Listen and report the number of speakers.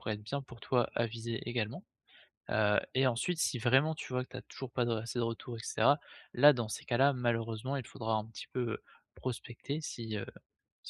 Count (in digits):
1